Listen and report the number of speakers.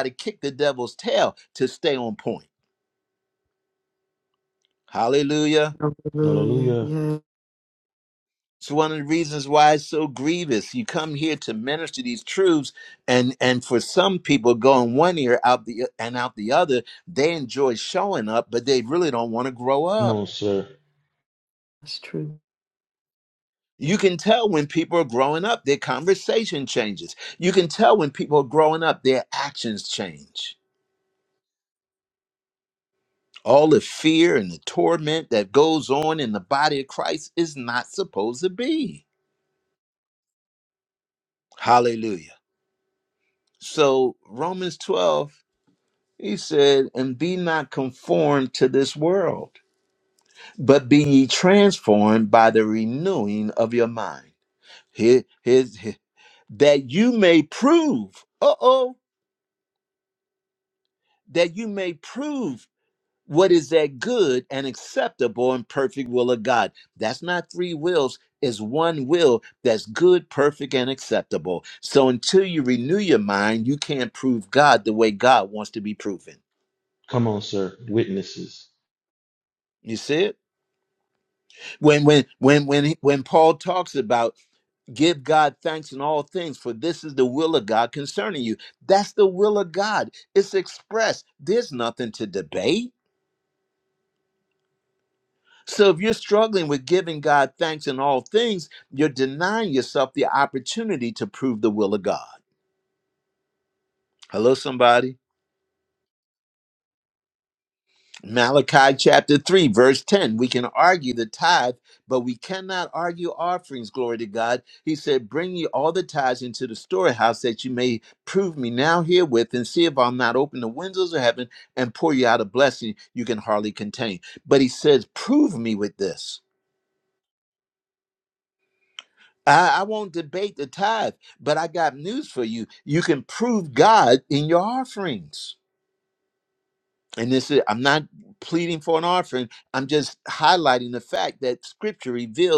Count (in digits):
3